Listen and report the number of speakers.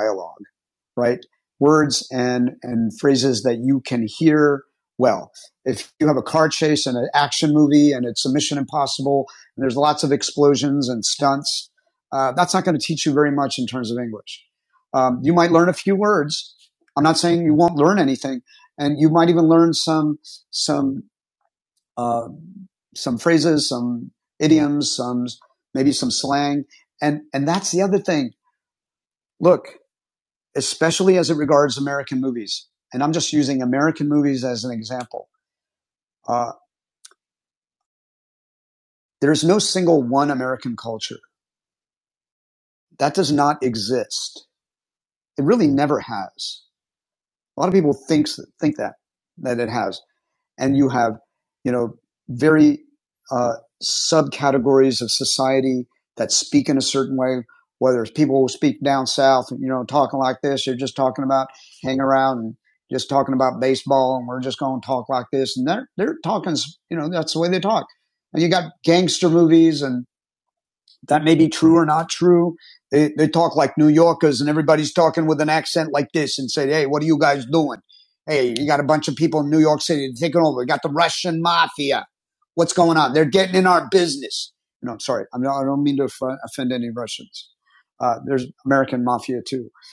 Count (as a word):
one